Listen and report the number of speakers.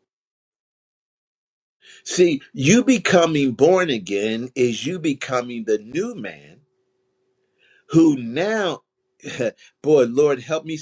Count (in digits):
1